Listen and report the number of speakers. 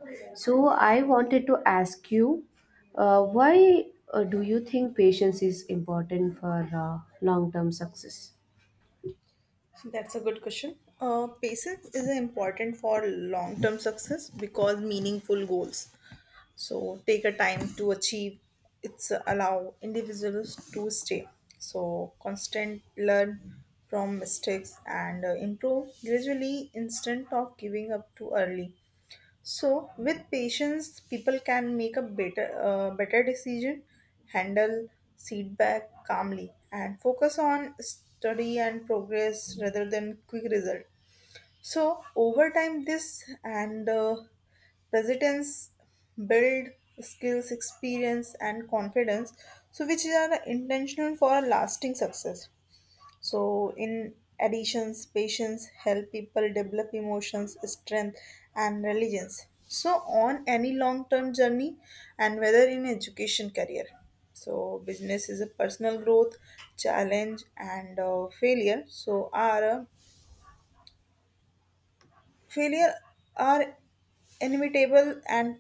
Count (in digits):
2